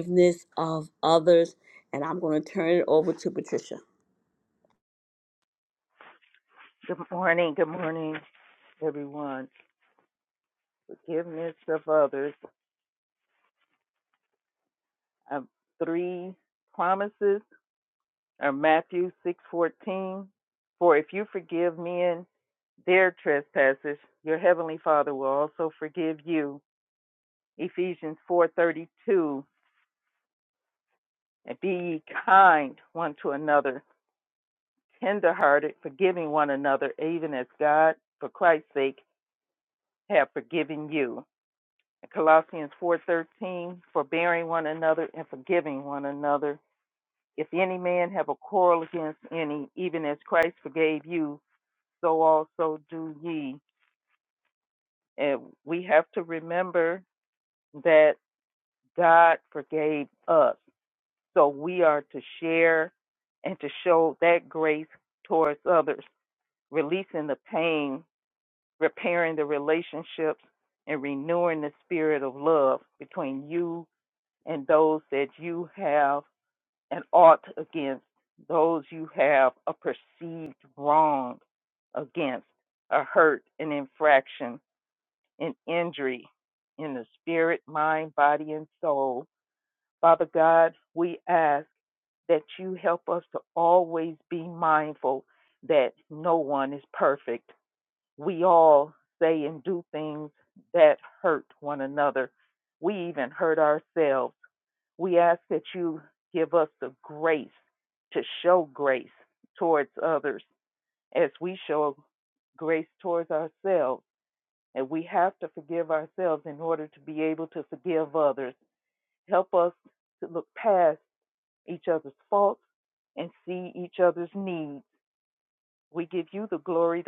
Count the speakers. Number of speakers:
2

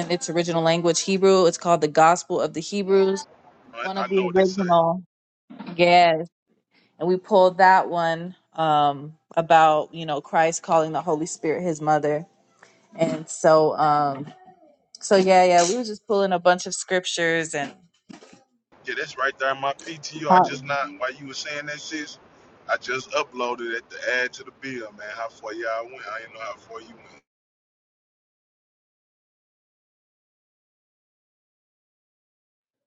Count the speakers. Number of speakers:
2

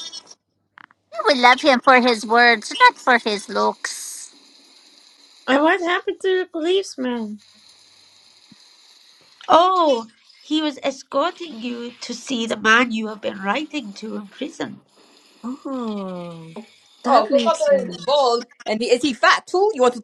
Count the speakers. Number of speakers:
4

